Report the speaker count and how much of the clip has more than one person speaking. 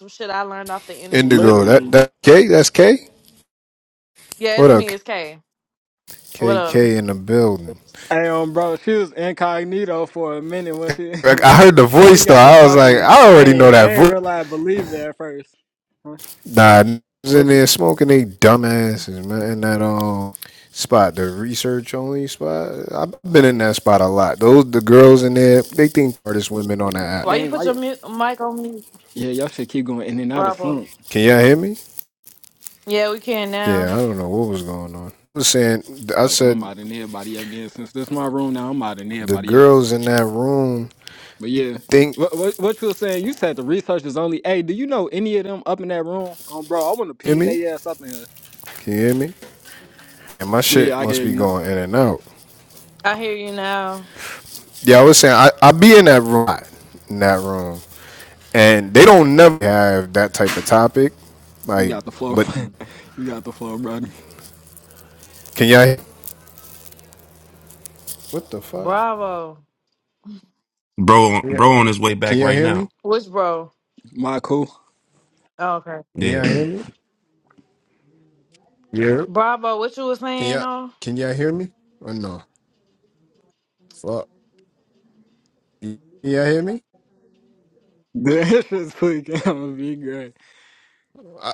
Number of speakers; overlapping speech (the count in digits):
4, about 10%